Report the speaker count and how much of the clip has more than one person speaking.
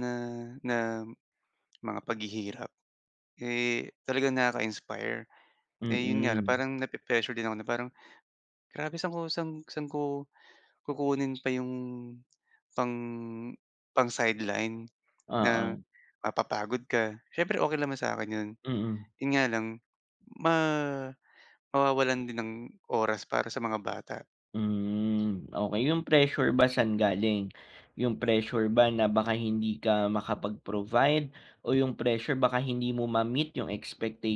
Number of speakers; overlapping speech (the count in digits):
2, about 3%